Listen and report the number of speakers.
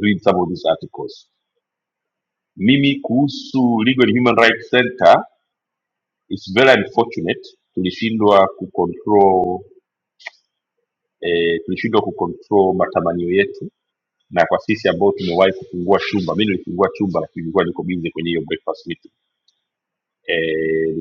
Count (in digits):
1